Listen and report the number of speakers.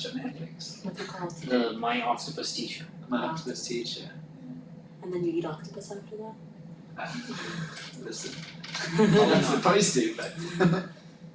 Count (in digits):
3